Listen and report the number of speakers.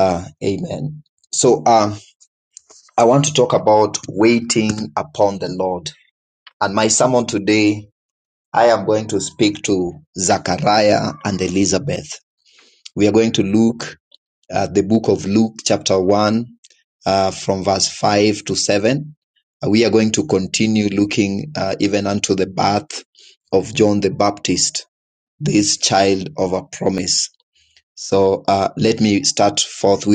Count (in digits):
1